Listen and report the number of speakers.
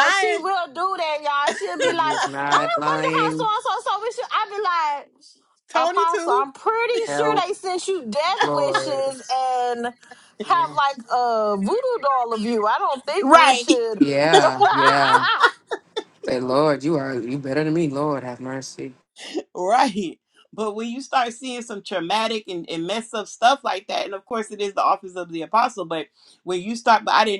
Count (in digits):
3